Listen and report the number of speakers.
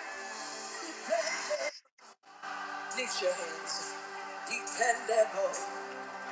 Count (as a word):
zero